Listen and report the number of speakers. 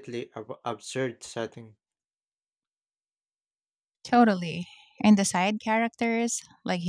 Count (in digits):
2